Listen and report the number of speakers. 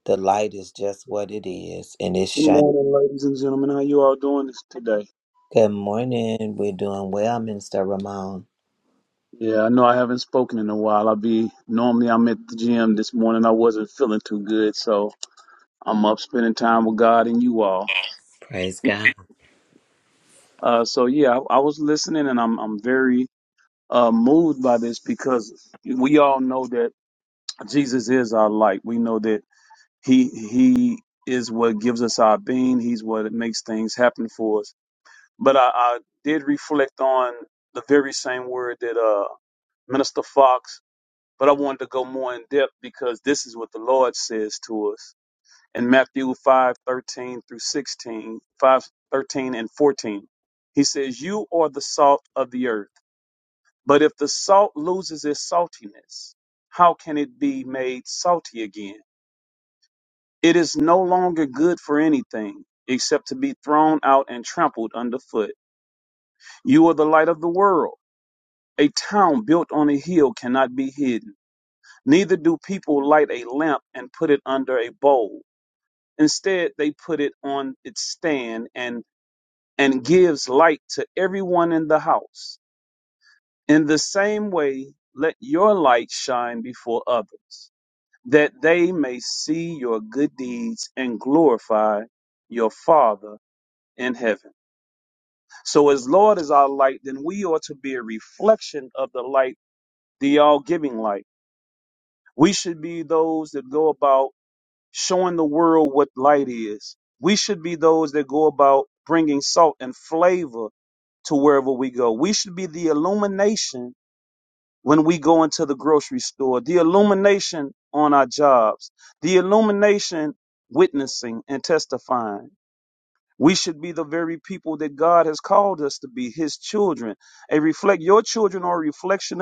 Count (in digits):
2